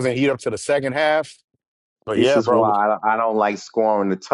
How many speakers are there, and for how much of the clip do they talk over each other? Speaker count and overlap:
two, about 13%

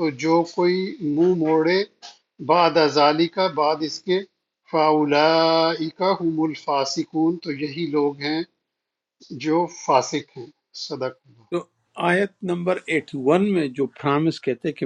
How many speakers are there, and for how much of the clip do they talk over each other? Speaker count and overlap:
two, no overlap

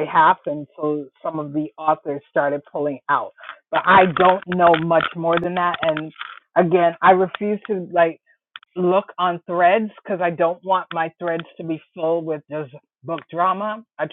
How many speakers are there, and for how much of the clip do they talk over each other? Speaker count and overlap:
one, no overlap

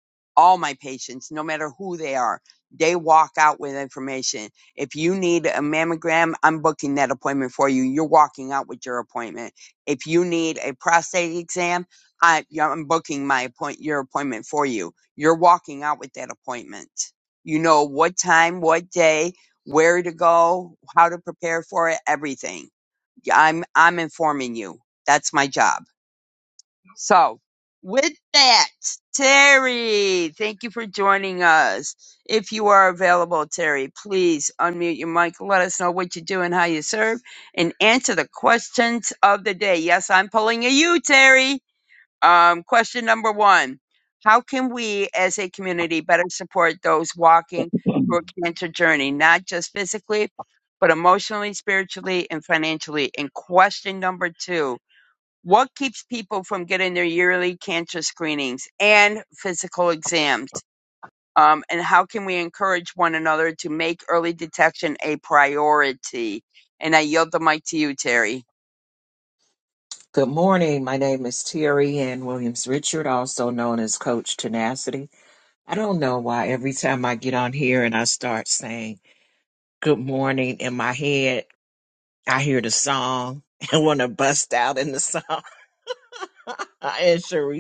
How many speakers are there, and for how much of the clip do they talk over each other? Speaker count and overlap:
two, no overlap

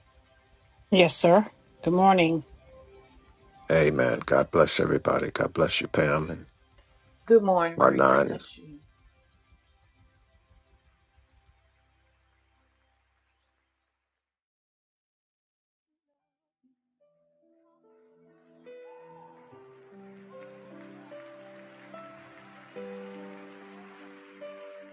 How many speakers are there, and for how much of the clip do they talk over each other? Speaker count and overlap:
three, about 2%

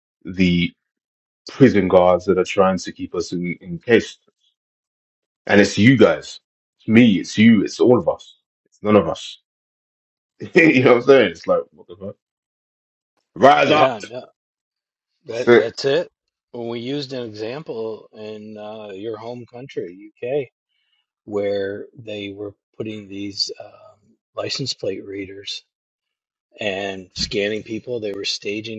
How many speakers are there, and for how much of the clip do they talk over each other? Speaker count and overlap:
two, about 2%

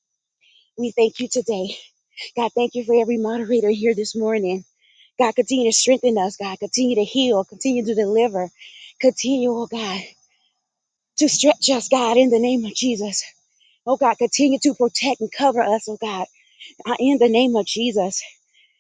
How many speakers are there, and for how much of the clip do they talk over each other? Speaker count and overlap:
one, no overlap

